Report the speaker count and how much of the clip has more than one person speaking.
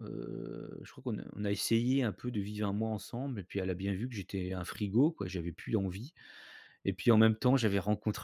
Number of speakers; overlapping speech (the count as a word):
one, no overlap